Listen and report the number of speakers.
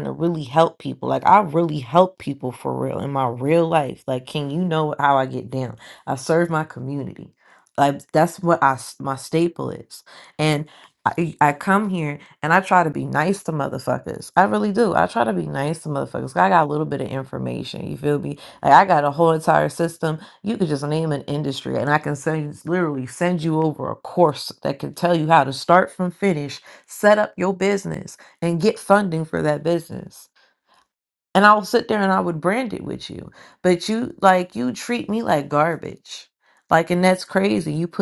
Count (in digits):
1